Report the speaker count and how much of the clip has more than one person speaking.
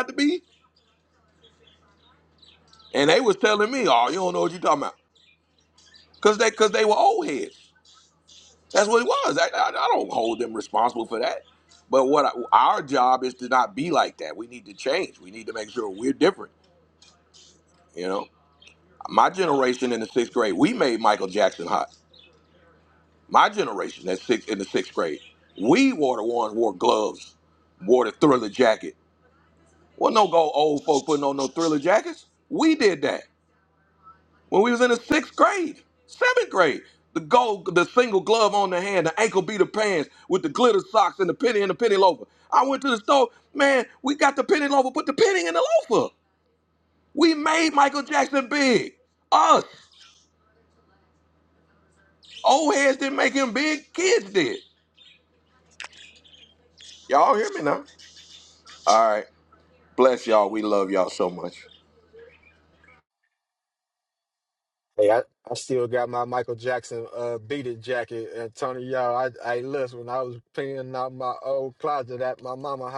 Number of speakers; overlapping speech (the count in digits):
2, no overlap